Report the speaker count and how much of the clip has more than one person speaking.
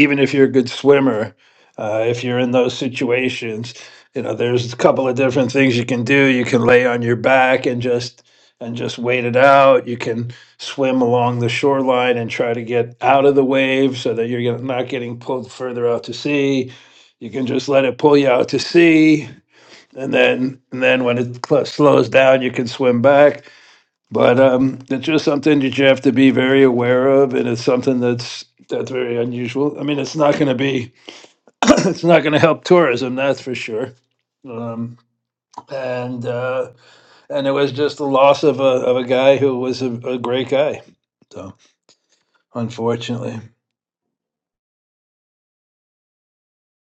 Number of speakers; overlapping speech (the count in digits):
1, no overlap